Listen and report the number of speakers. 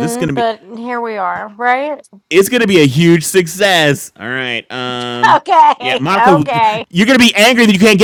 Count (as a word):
two